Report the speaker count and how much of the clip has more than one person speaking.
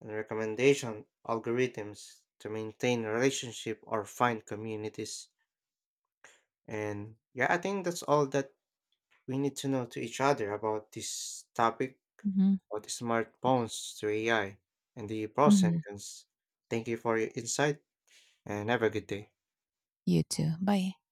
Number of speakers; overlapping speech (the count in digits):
2, about 2%